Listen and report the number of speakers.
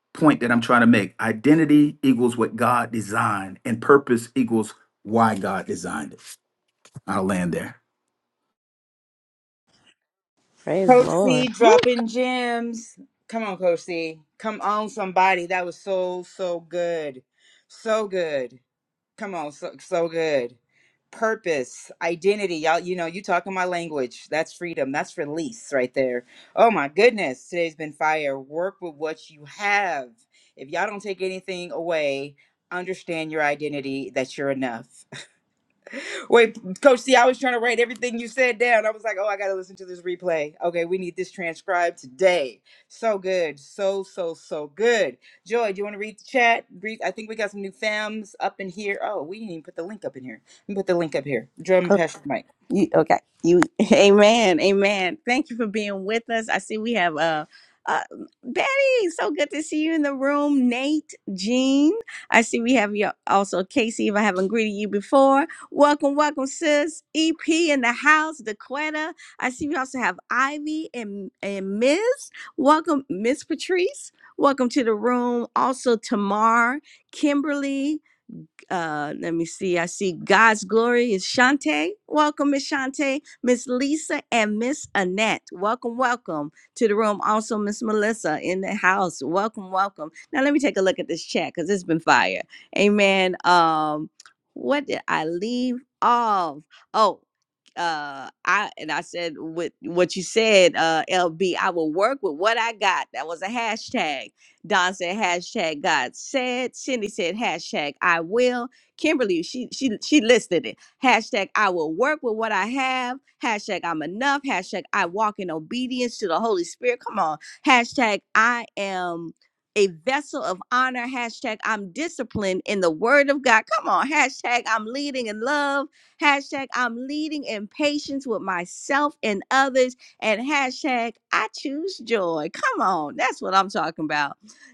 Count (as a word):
three